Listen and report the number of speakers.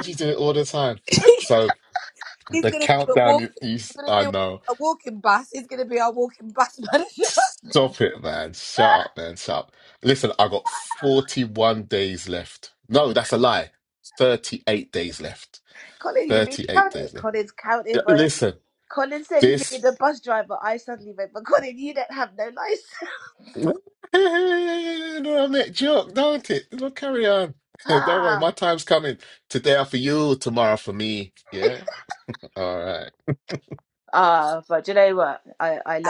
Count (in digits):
3